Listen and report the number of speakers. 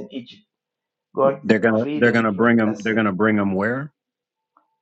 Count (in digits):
2